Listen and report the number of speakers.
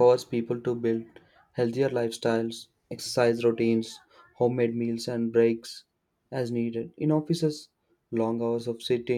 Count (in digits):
1